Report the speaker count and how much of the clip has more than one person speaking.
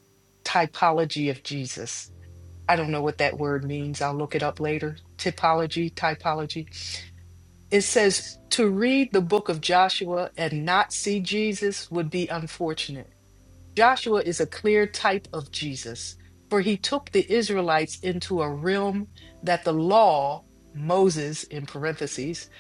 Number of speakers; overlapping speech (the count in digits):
1, no overlap